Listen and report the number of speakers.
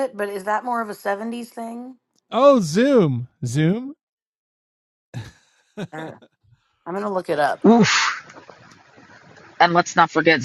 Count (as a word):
three